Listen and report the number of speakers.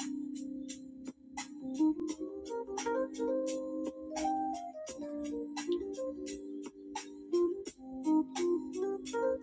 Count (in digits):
0